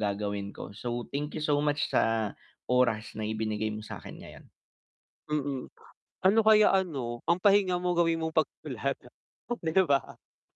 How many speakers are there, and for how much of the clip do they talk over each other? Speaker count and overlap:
two, no overlap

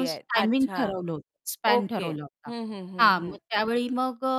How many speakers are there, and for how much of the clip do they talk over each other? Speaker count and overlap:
two, about 40%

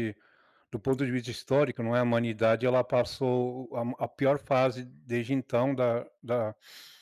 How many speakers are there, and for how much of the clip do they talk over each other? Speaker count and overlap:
one, no overlap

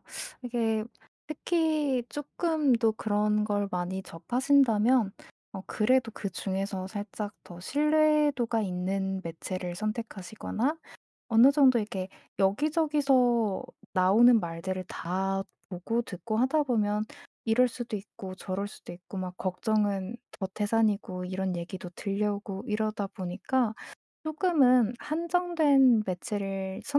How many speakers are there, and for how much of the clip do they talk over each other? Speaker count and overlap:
one, no overlap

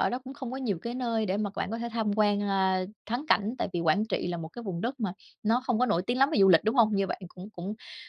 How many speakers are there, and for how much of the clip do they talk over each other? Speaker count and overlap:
one, no overlap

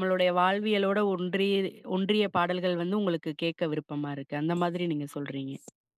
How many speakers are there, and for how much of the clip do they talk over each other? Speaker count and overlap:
one, no overlap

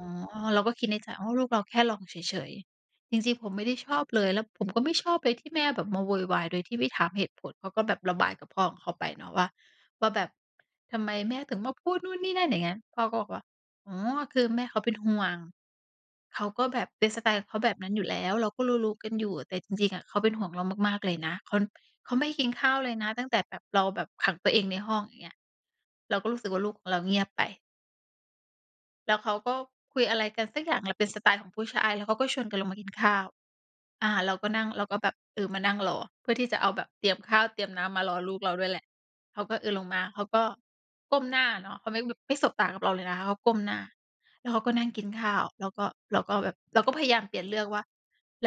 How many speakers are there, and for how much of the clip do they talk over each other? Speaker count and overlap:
one, no overlap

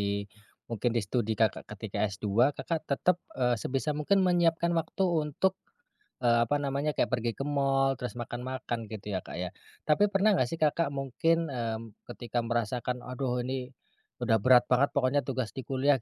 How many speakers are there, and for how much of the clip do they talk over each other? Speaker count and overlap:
one, no overlap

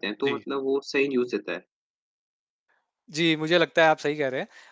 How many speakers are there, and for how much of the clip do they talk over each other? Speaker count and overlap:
two, about 4%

